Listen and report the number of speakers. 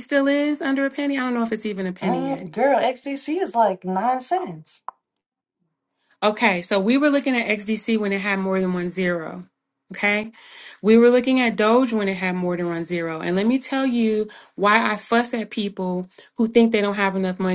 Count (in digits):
2